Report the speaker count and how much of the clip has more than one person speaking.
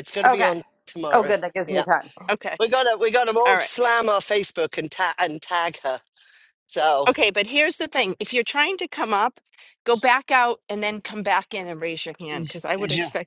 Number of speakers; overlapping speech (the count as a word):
three, about 12%